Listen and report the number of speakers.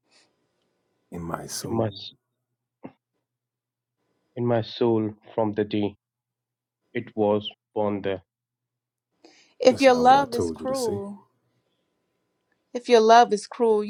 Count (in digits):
3